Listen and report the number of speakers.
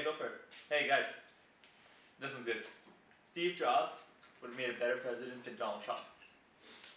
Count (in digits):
1